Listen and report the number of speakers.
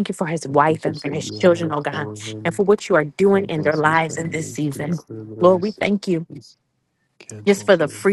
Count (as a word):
two